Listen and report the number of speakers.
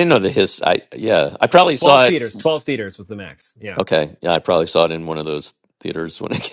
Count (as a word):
two